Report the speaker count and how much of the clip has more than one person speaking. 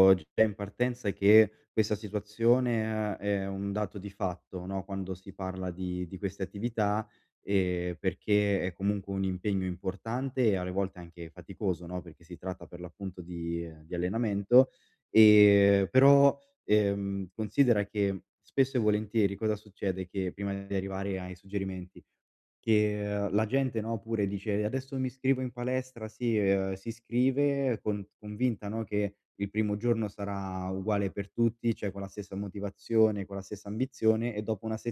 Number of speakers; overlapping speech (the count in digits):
1, no overlap